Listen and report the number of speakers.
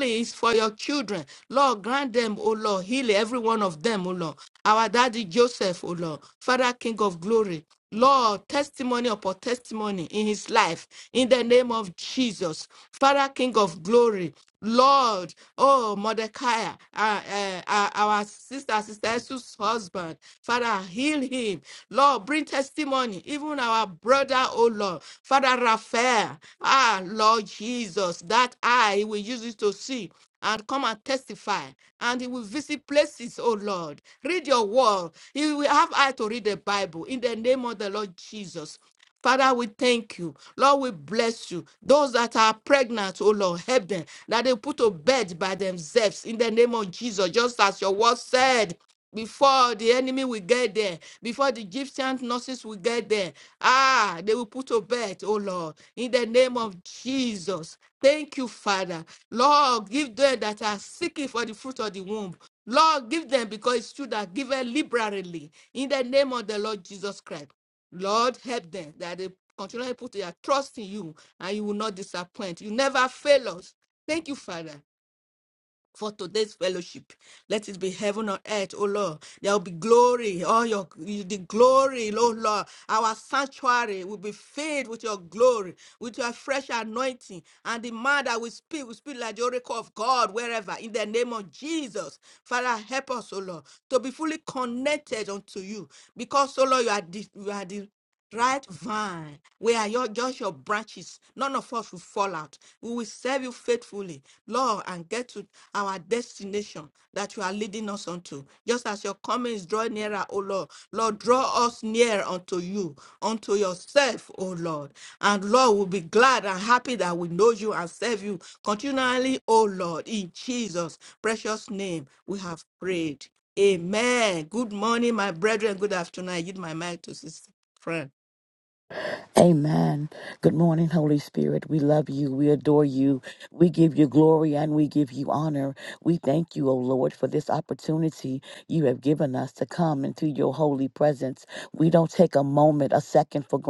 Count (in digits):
2